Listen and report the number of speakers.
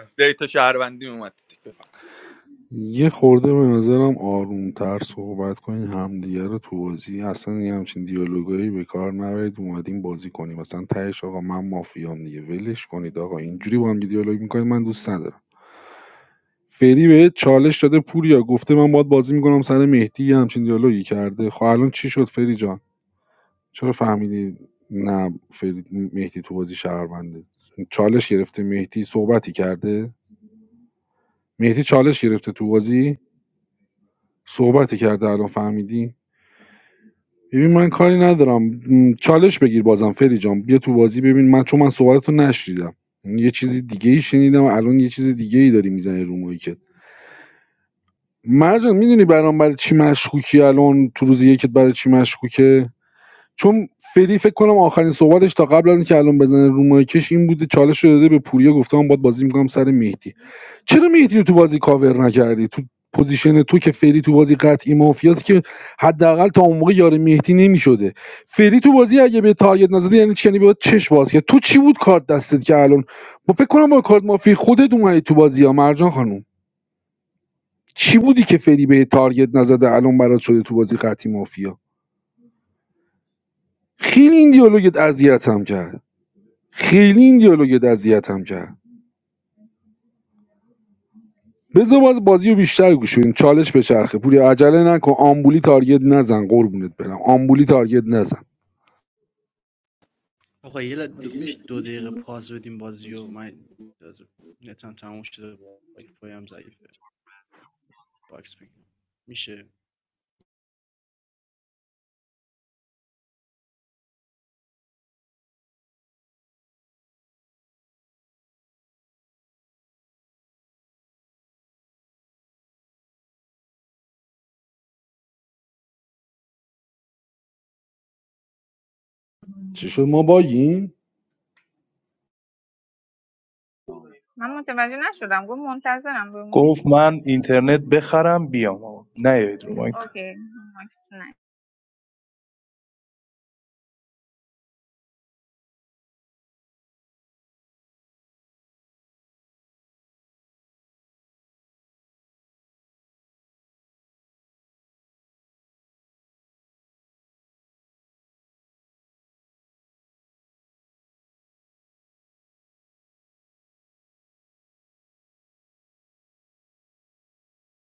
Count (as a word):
five